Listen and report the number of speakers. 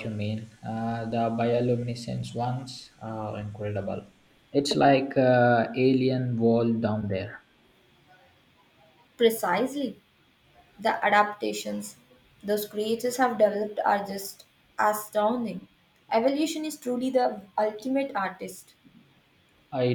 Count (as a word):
two